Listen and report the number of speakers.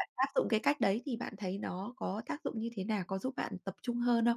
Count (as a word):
one